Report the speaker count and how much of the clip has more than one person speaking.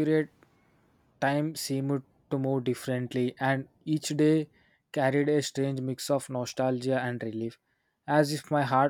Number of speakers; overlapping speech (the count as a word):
one, no overlap